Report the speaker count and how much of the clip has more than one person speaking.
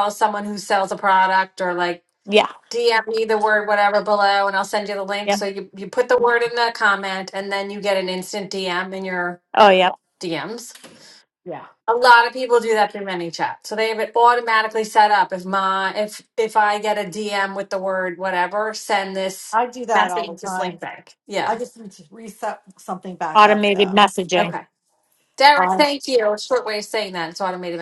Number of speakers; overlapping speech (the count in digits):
3, about 7%